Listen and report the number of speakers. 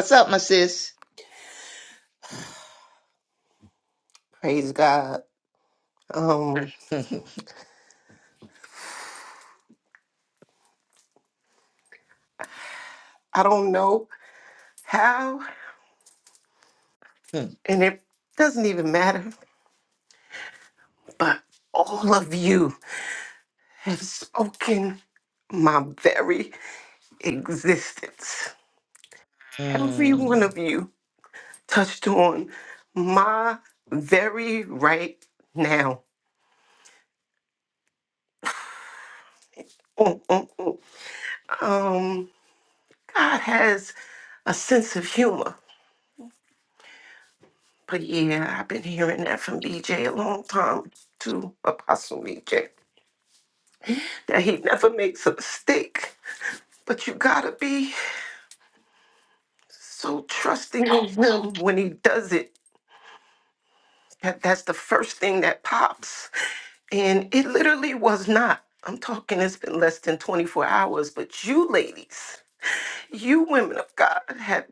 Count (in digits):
2